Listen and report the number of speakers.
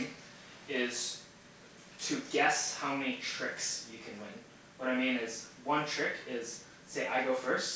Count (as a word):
one